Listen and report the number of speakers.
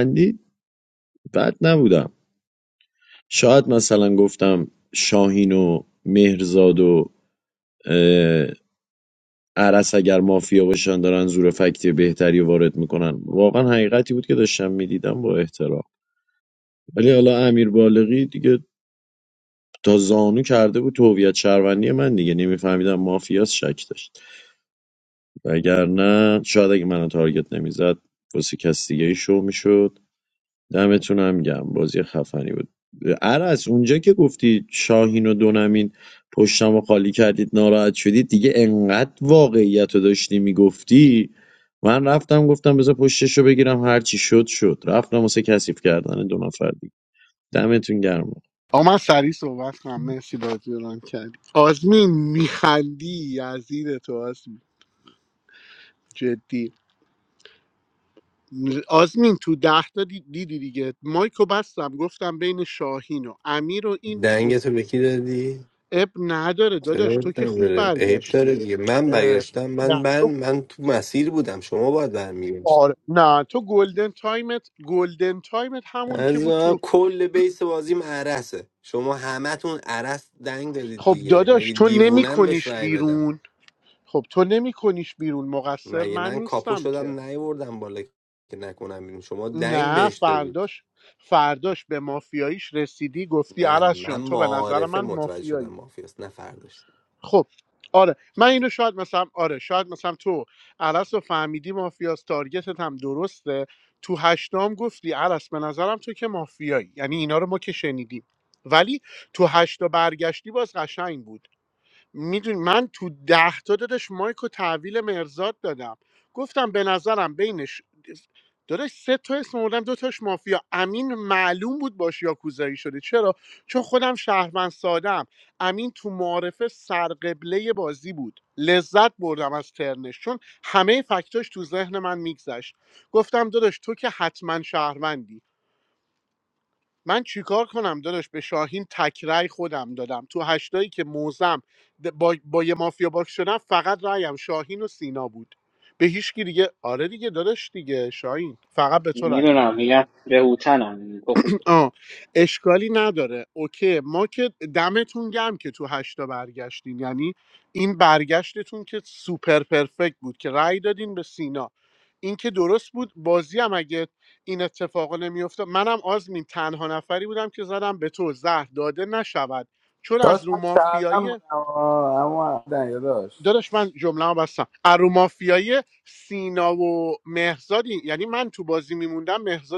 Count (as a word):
five